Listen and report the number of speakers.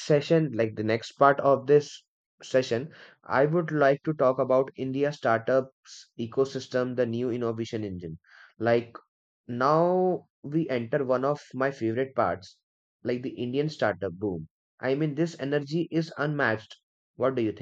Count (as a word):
one